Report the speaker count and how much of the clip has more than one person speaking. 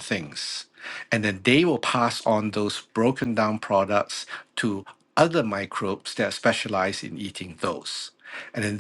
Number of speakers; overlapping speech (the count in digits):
1, no overlap